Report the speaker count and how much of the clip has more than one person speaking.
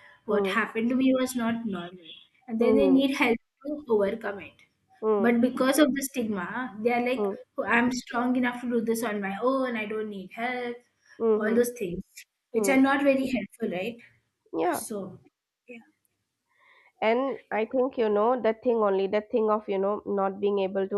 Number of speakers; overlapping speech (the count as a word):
two, about 9%